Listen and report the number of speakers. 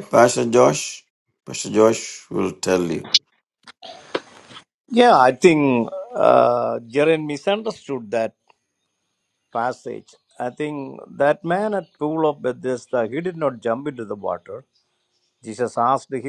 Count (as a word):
two